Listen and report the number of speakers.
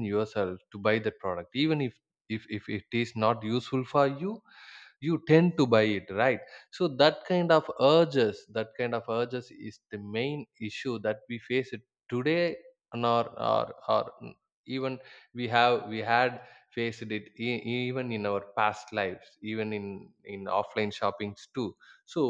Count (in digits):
1